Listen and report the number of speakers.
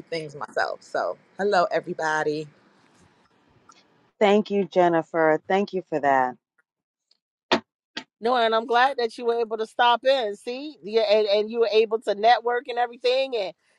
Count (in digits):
3